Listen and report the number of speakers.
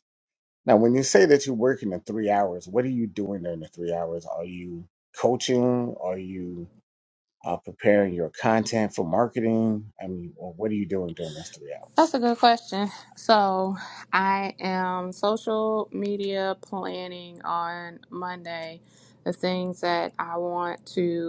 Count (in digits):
2